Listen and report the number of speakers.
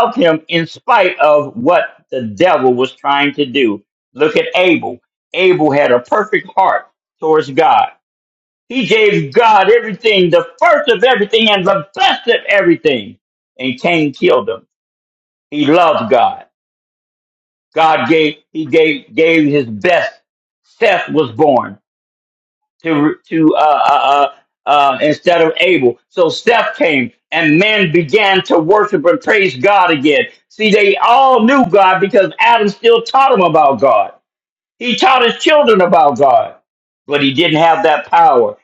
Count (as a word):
one